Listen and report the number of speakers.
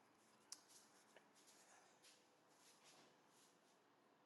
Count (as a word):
zero